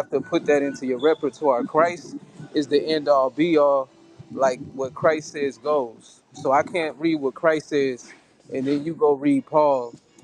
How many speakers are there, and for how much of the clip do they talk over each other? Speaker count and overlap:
1, no overlap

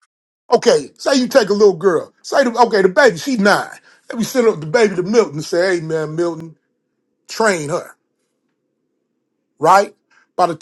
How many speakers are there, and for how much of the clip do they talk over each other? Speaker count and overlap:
1, no overlap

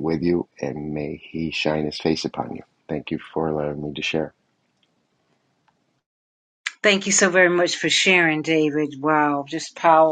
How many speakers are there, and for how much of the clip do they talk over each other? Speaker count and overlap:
2, no overlap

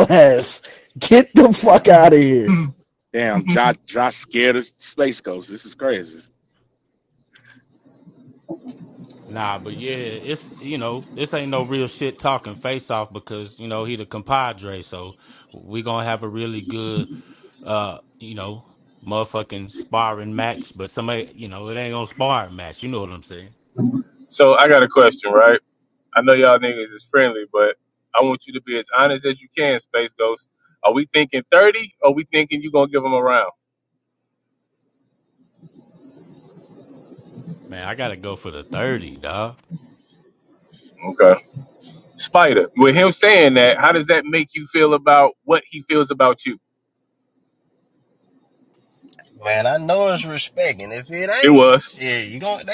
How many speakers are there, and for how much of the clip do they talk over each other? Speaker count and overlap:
5, about 1%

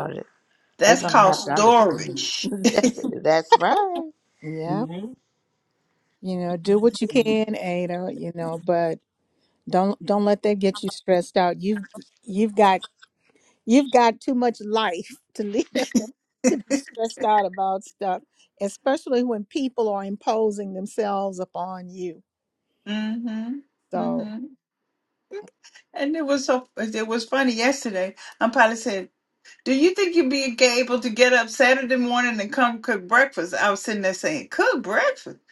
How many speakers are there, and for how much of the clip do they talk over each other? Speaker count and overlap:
3, about 5%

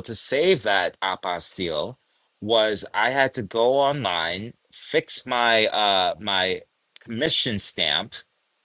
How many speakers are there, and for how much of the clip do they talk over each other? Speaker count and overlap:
1, no overlap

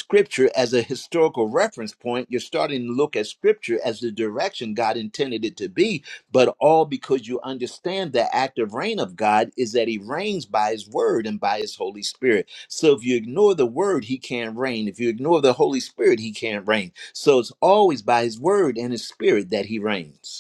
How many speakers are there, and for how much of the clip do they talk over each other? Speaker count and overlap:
1, no overlap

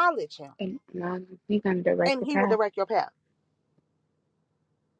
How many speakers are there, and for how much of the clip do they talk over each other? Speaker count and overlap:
2, about 10%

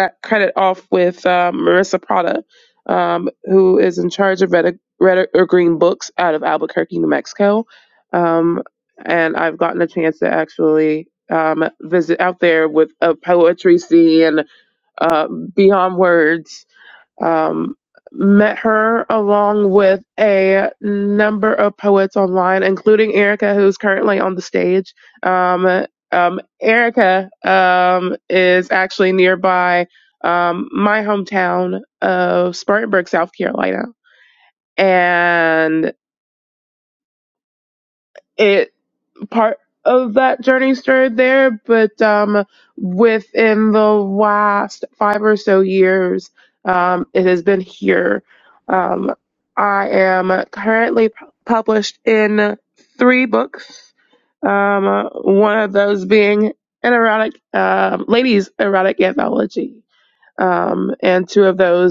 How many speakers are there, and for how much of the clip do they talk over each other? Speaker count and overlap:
1, no overlap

